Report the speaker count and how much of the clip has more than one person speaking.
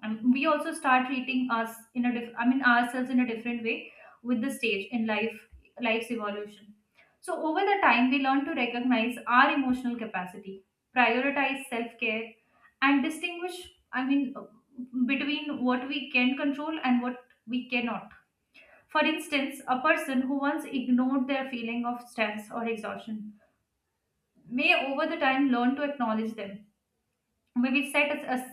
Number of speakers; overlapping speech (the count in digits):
1, no overlap